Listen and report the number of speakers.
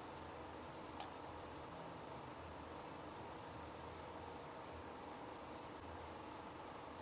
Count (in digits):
0